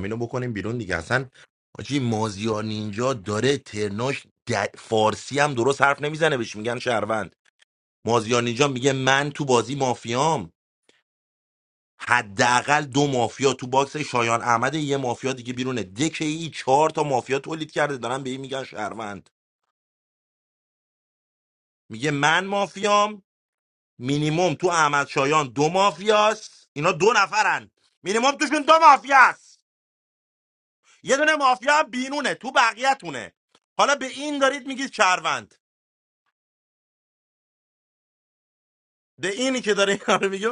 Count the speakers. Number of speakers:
1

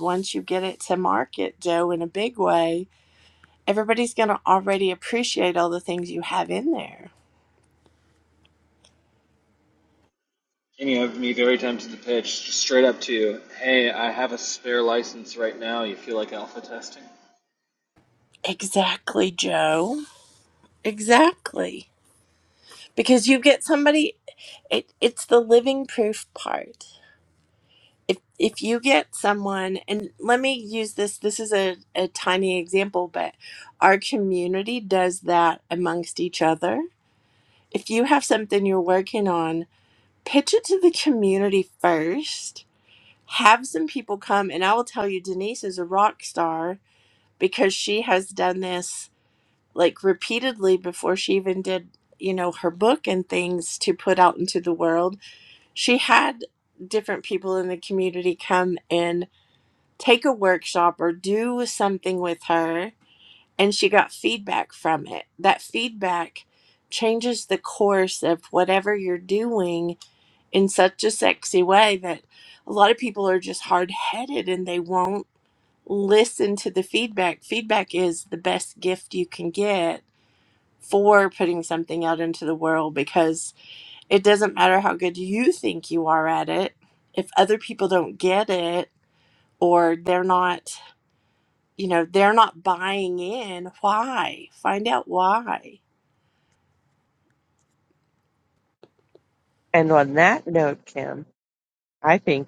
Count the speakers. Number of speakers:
3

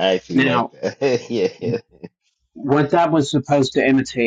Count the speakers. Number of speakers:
2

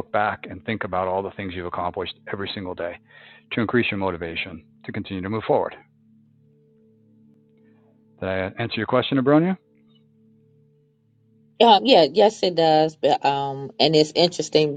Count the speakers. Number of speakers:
2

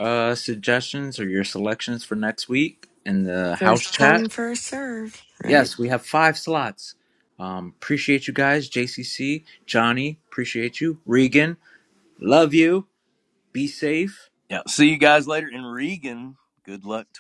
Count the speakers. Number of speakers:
3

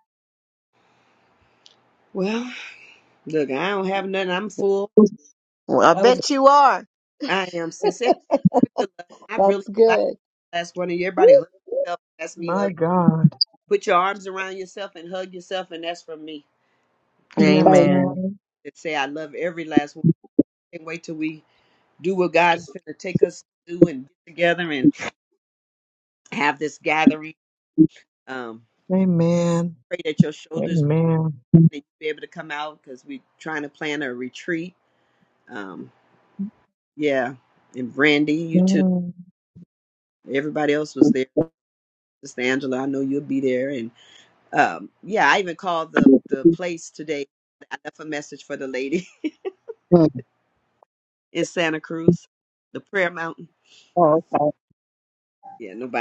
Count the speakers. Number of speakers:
4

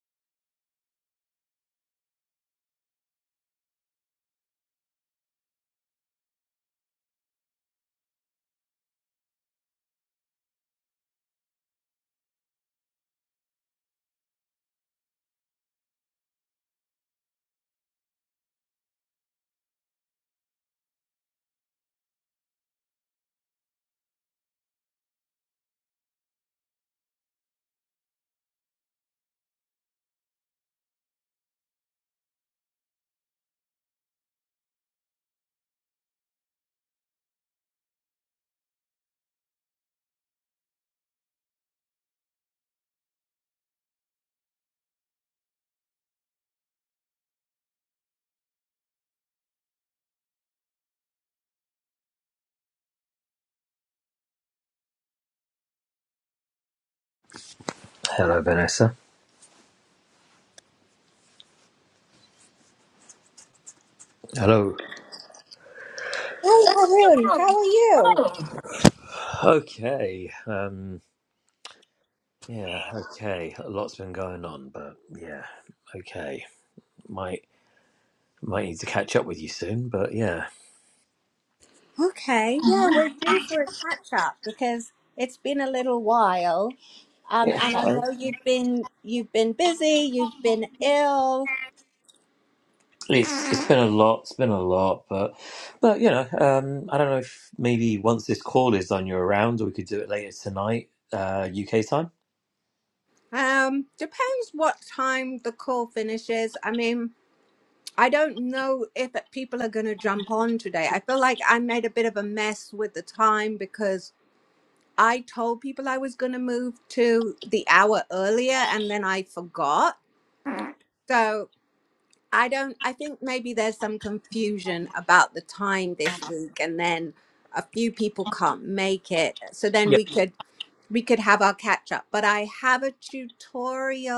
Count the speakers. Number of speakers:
2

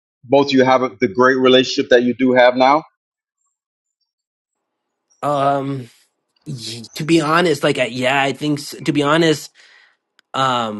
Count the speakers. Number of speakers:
2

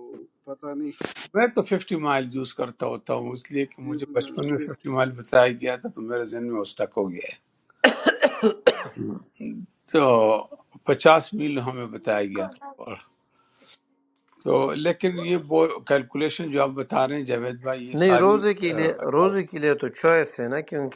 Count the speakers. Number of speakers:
3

